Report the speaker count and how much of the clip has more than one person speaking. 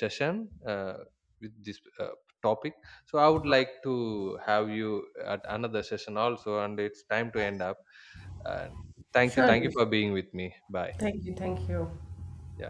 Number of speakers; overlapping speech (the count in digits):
2, about 4%